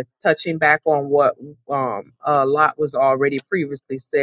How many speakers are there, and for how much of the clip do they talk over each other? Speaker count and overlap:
1, no overlap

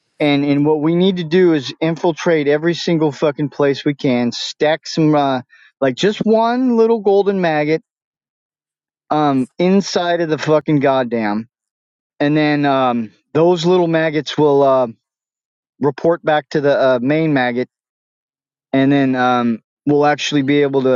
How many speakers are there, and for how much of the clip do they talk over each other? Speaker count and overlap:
1, no overlap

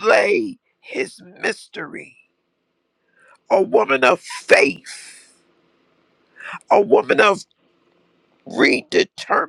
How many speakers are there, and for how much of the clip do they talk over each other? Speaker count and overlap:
1, no overlap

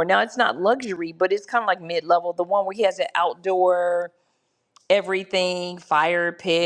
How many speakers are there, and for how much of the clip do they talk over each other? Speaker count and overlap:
1, no overlap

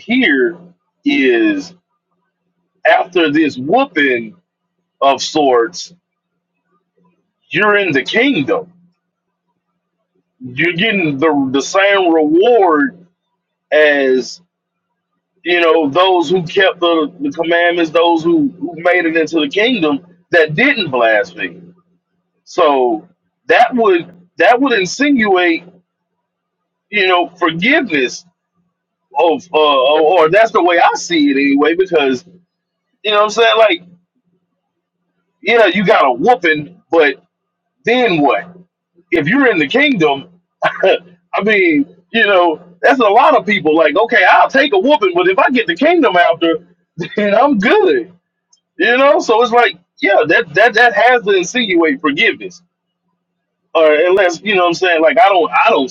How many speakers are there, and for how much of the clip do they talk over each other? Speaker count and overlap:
1, no overlap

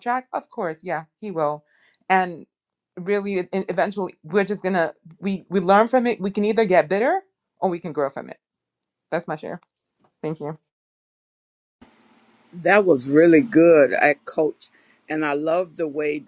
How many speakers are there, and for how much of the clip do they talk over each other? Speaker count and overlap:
2, no overlap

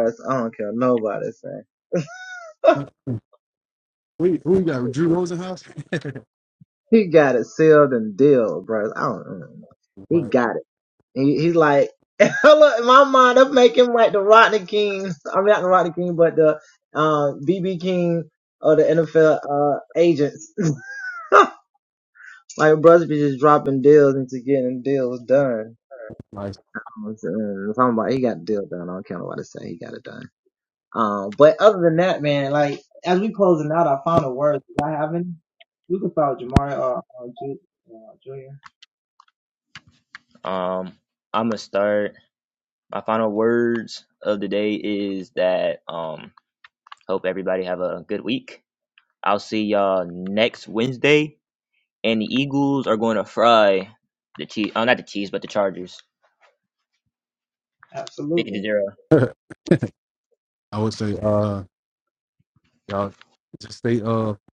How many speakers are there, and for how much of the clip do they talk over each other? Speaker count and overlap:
3, about 1%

